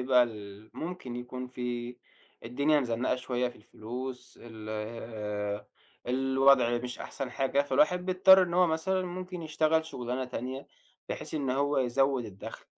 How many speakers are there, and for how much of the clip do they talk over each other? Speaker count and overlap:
one, no overlap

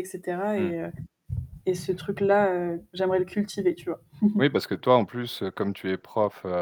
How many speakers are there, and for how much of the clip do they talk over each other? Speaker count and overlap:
two, about 3%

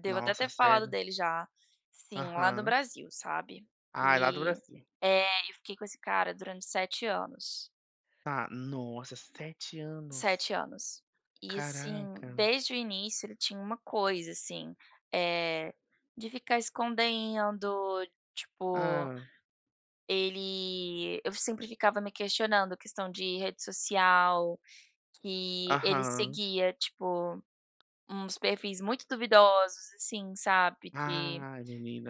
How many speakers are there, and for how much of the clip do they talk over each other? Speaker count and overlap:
two, about 13%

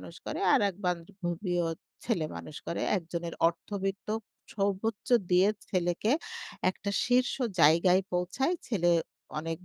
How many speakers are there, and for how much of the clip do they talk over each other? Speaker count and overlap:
one, no overlap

